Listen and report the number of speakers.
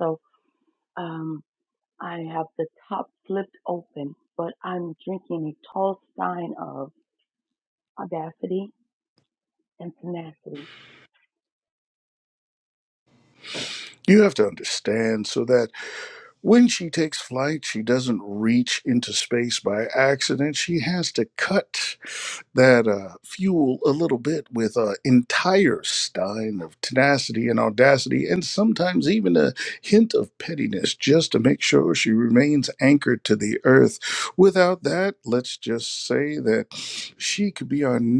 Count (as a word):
two